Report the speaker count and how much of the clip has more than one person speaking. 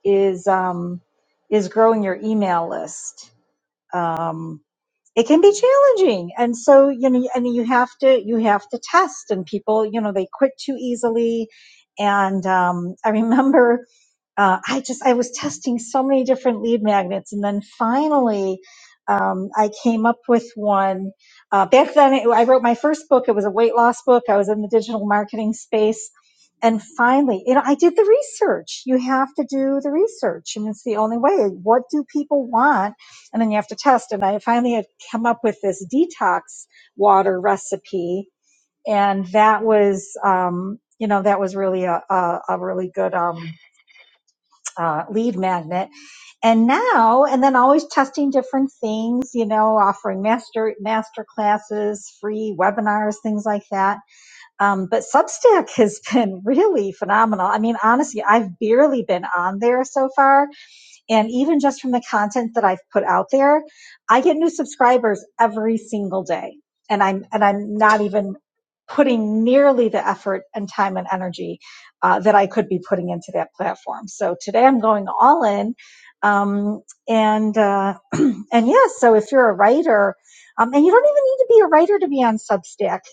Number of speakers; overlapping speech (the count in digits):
1, no overlap